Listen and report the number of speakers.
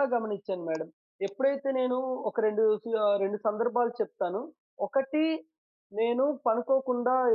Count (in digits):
1